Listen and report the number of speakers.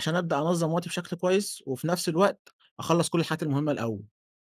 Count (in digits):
1